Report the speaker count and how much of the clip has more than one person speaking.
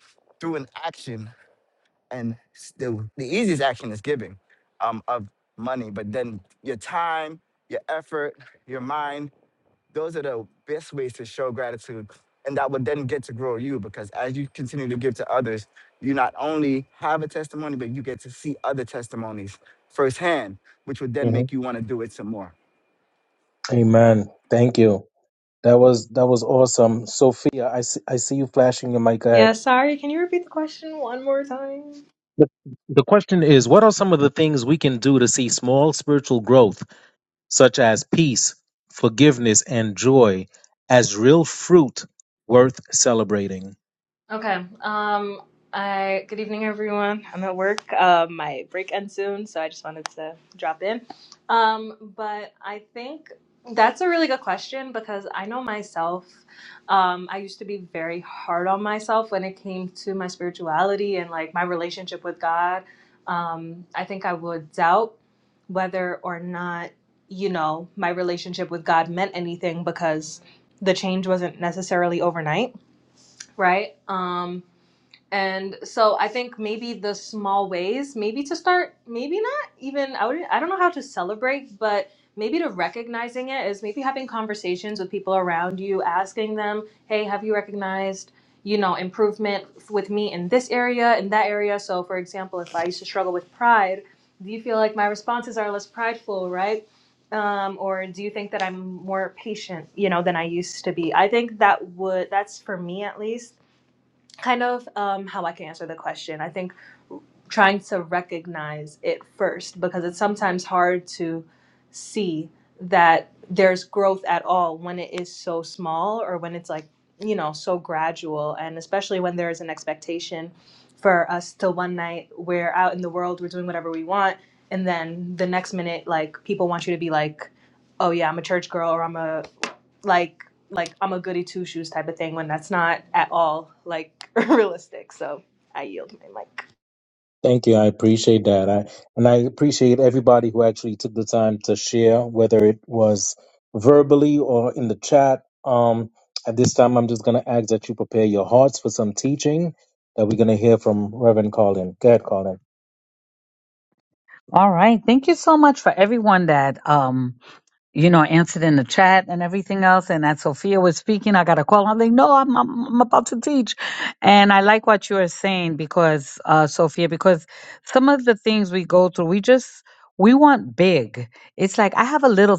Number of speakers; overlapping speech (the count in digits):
4, under 1%